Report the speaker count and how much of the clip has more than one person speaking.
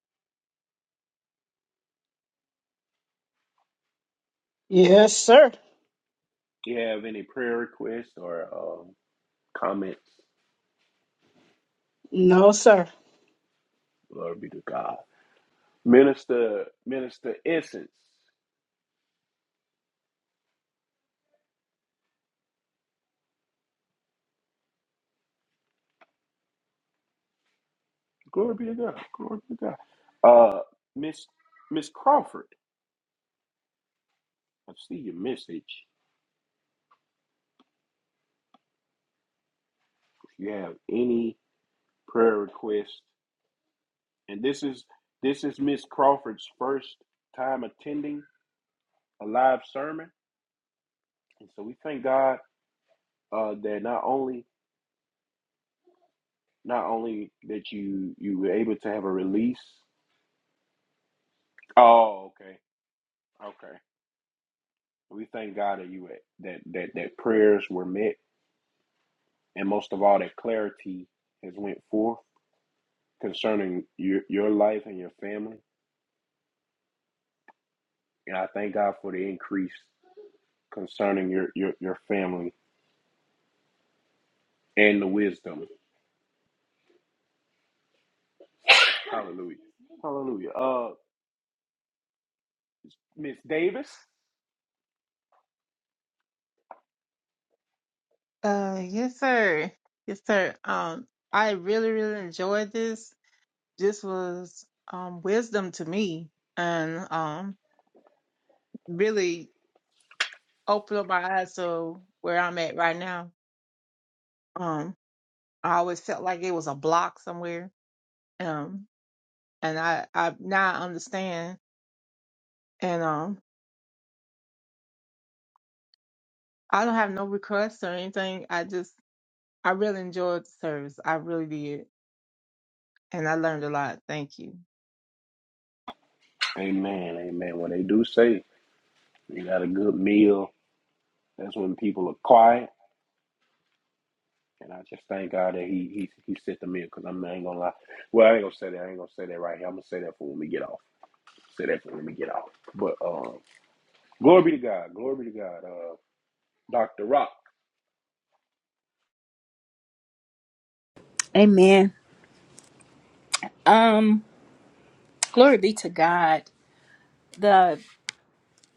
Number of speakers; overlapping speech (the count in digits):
4, no overlap